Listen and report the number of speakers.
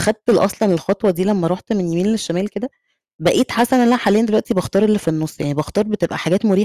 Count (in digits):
1